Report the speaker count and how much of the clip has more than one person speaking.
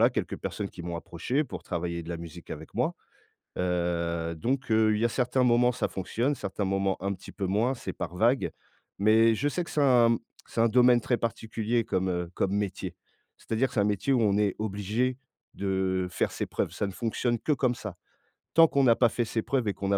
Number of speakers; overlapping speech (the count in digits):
1, no overlap